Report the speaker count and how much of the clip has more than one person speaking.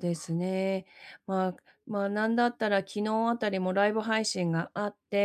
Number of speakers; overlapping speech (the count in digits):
1, no overlap